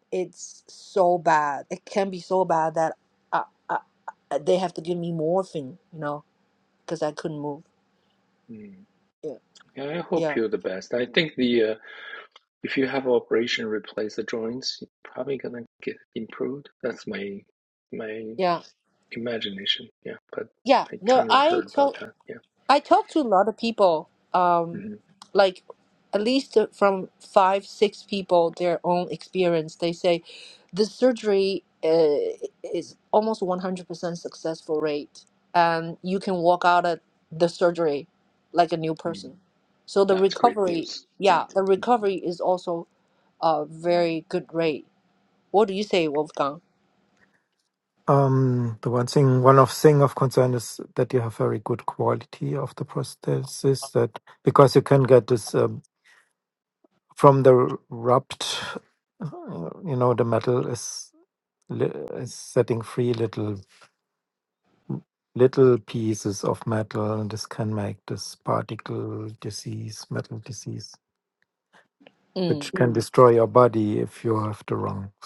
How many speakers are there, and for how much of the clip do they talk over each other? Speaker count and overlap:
three, about 4%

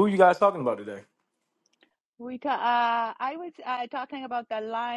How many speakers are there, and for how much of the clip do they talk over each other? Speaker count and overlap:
two, no overlap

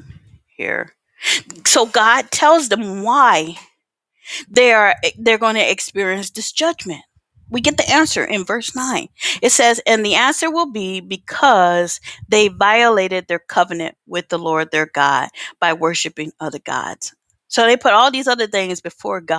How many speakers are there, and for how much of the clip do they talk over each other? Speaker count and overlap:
one, no overlap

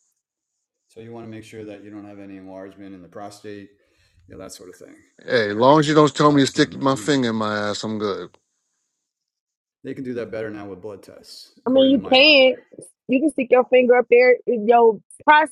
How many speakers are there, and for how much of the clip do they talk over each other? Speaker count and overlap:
three, about 15%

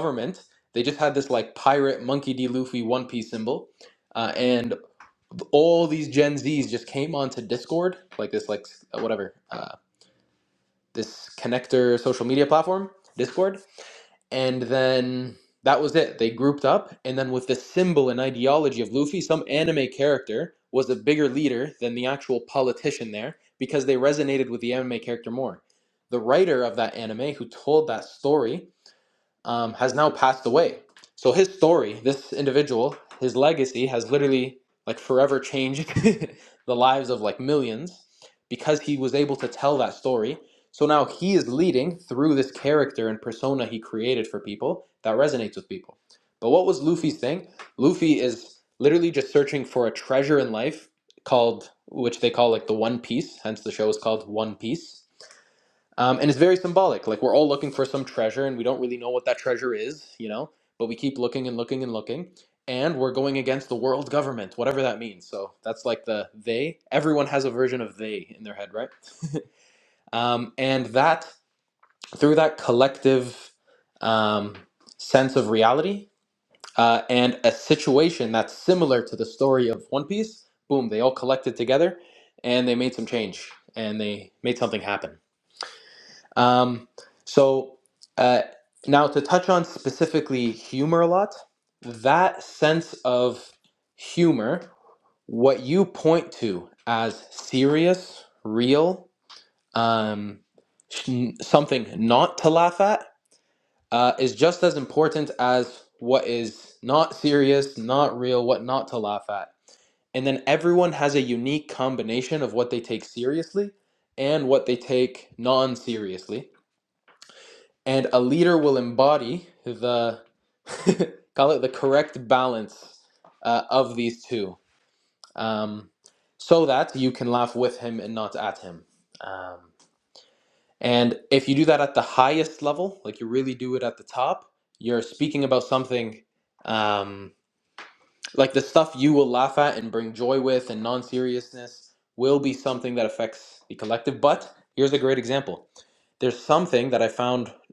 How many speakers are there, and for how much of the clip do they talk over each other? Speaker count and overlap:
one, no overlap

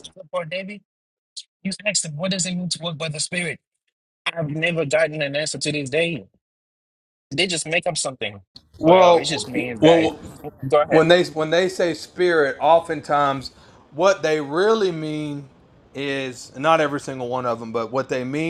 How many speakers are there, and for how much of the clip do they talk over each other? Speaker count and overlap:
two, about 6%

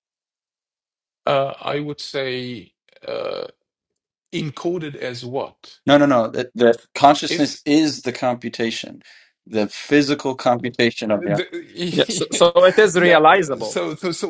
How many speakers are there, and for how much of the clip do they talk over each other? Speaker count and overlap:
three, about 12%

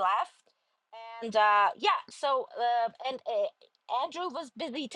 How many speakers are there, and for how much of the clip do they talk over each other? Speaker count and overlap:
one, no overlap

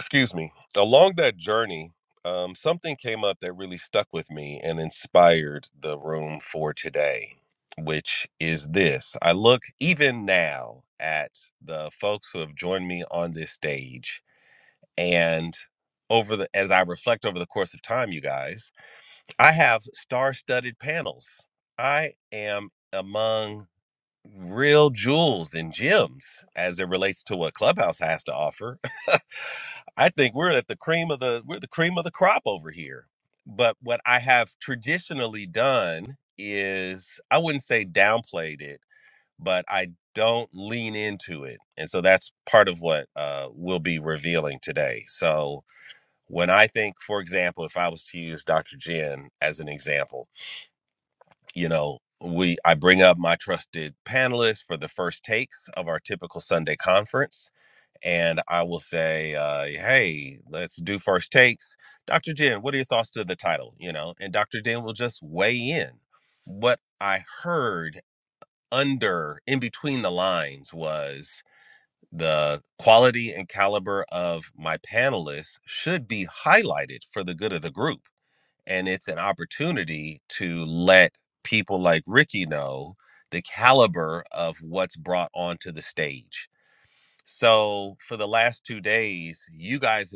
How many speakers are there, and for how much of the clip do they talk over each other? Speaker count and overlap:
one, no overlap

